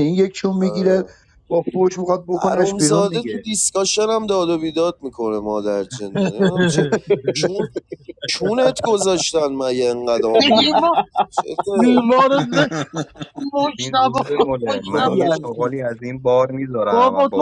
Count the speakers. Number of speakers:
four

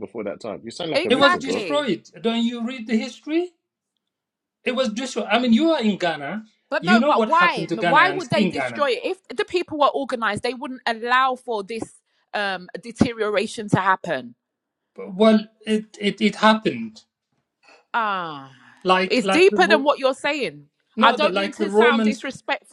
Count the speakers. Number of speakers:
three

